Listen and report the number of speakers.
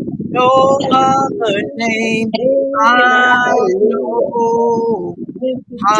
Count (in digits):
2